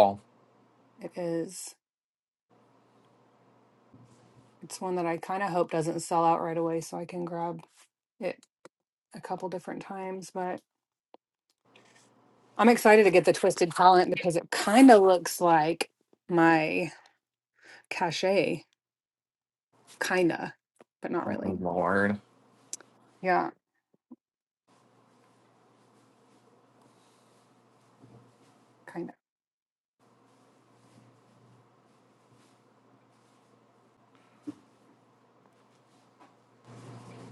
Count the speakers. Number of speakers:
two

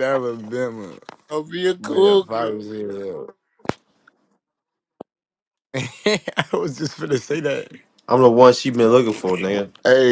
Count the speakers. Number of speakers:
three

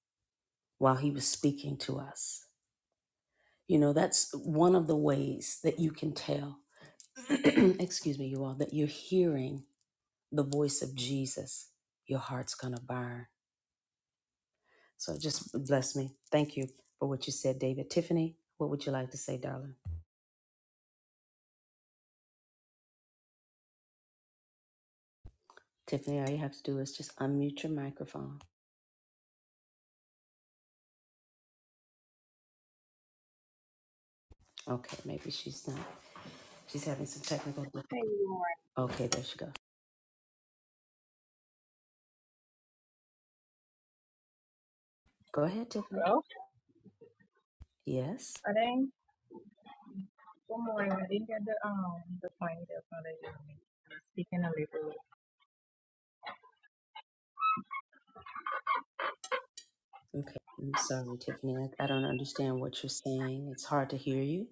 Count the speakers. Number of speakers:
two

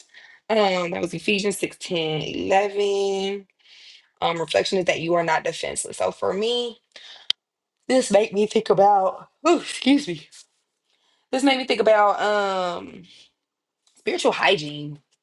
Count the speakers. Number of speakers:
one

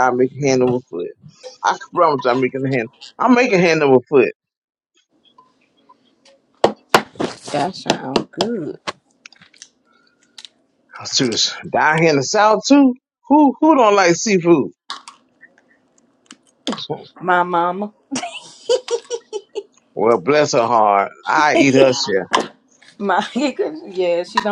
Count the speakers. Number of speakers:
two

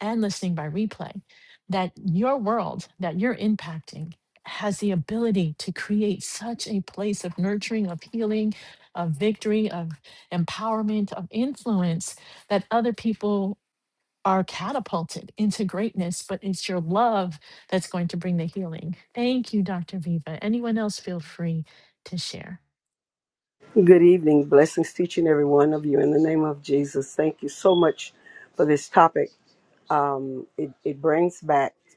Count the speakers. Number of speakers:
two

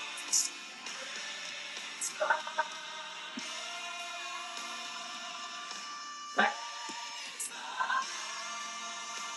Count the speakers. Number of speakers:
zero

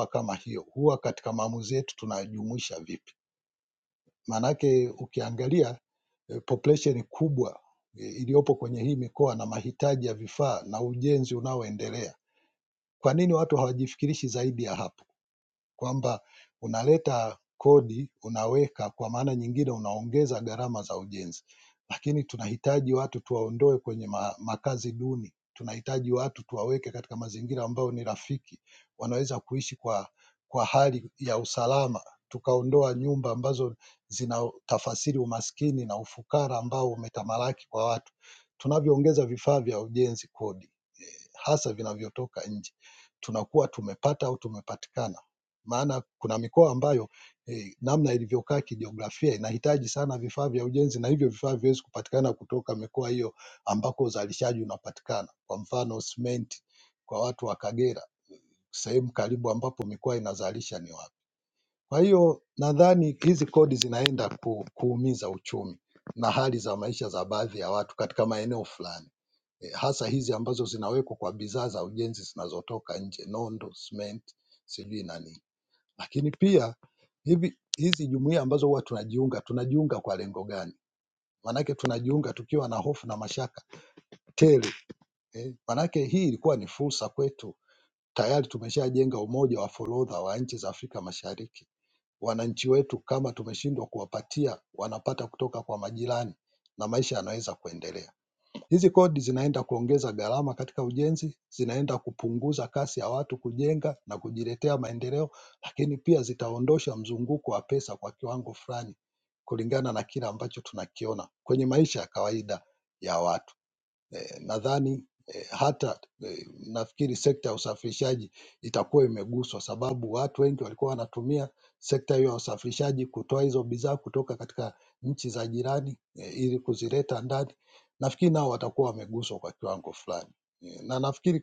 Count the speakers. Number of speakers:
one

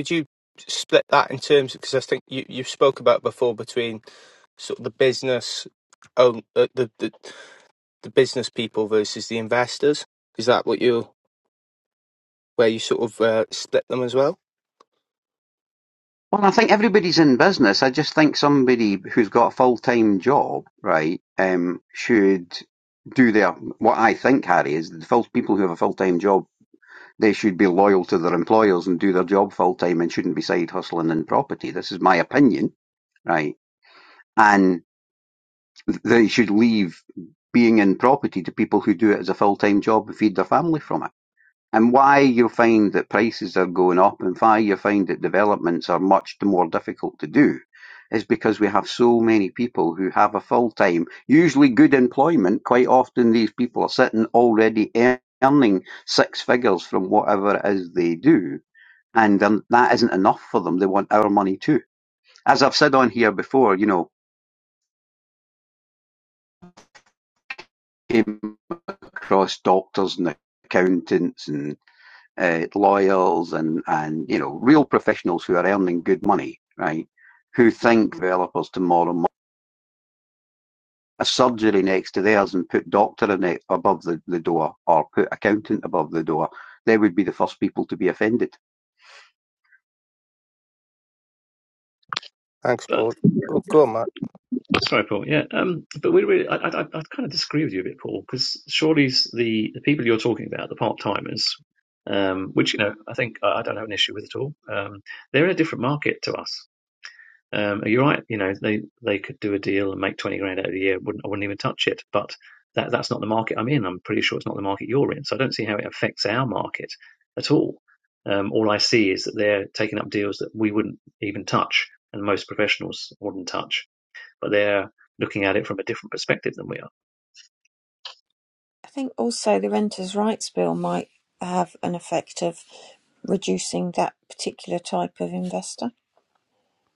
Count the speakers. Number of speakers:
four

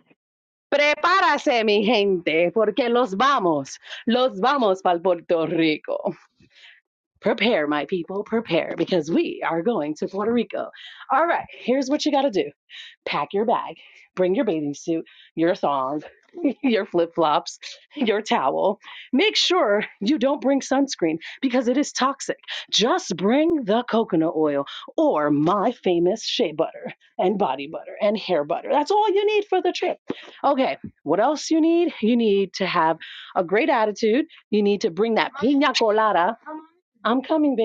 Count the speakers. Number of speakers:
one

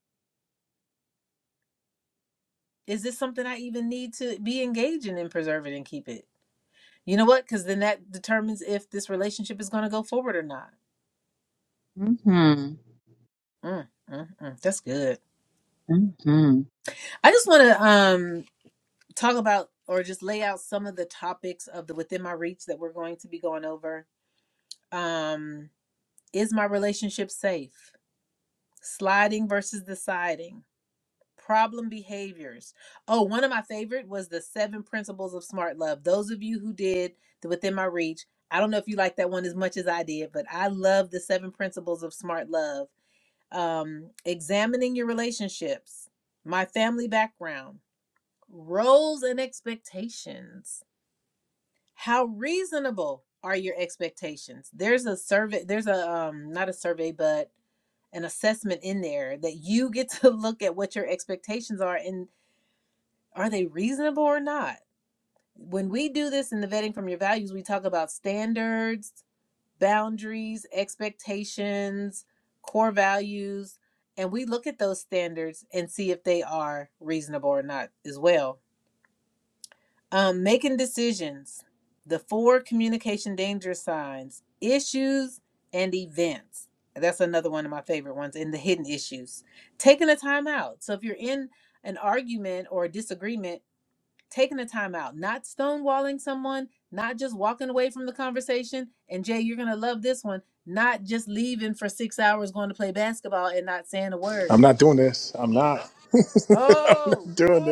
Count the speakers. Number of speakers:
three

